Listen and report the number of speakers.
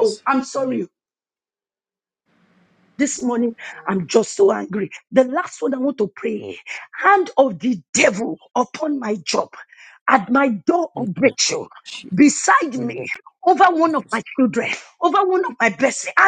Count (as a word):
one